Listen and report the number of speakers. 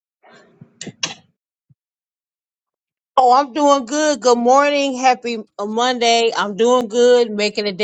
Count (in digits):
1